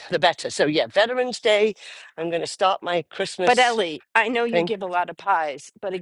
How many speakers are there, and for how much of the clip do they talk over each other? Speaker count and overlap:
two, about 8%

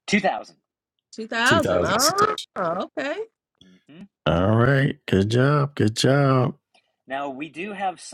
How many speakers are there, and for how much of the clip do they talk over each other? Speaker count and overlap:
three, about 7%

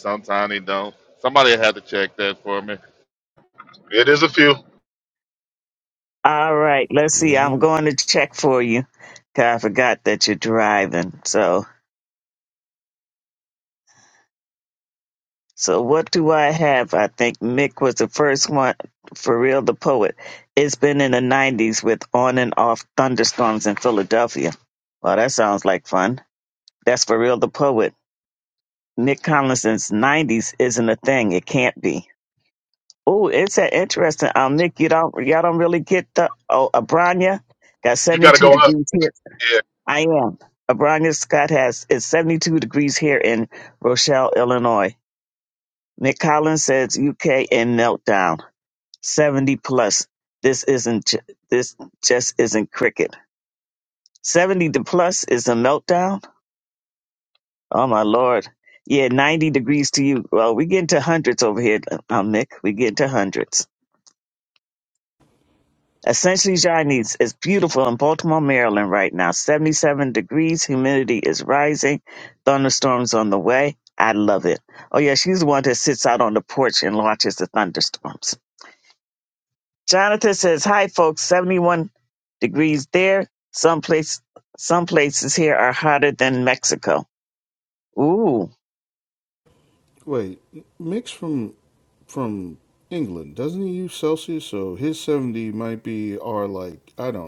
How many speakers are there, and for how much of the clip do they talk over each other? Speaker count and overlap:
four, about 1%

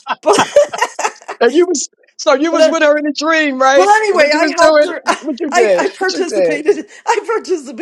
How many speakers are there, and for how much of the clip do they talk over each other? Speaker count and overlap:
two, about 33%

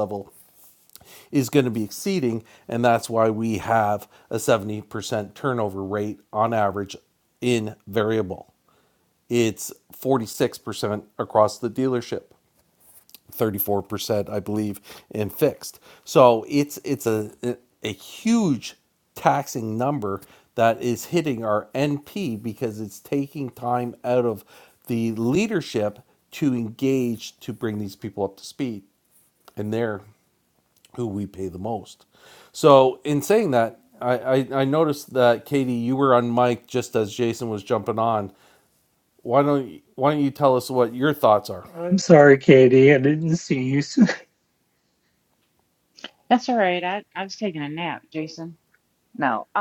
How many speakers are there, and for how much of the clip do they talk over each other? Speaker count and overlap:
three, no overlap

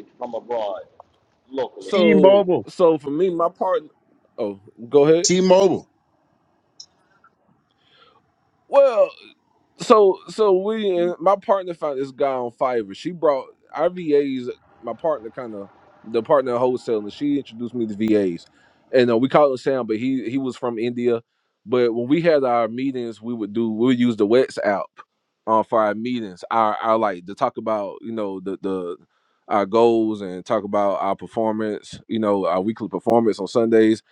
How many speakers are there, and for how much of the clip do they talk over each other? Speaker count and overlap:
three, about 2%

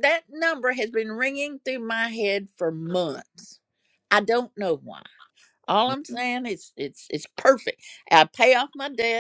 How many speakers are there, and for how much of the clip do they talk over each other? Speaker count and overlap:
one, no overlap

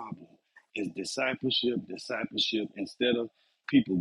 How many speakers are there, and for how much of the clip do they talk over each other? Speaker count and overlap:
one, no overlap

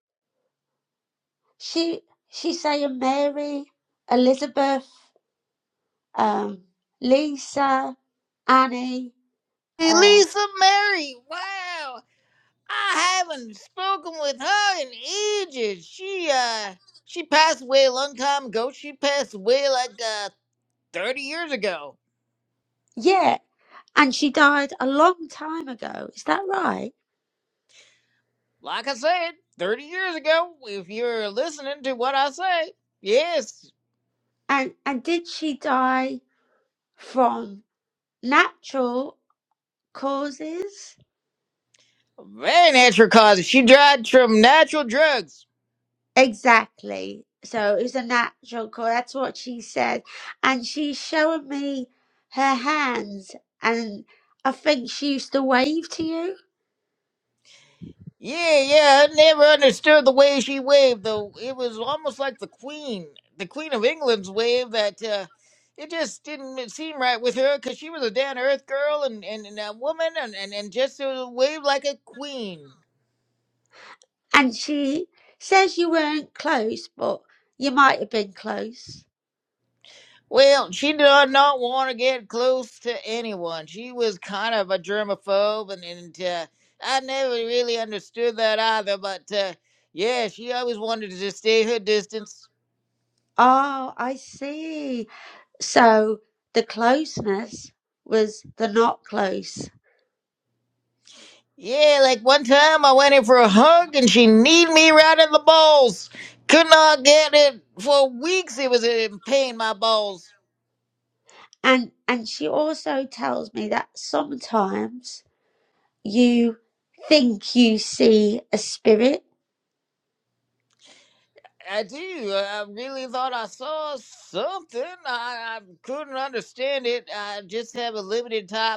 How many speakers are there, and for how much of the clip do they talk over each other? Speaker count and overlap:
two, under 1%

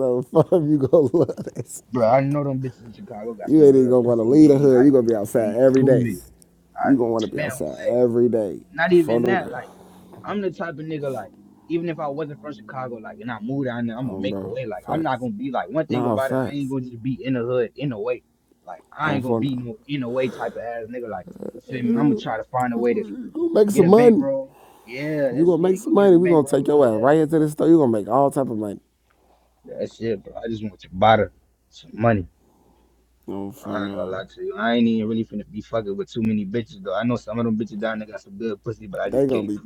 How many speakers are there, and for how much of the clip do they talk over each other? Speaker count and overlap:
two, about 22%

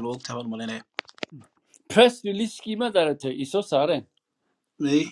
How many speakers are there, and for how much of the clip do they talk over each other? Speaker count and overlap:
two, no overlap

